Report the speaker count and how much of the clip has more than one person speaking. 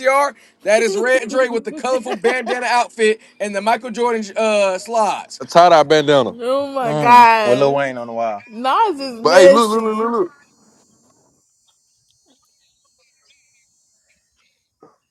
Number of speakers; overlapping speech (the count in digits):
4, about 12%